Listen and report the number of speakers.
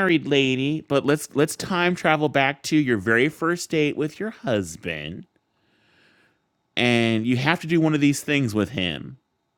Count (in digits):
1